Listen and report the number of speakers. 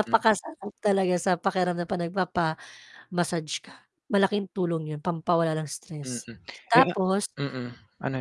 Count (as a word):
two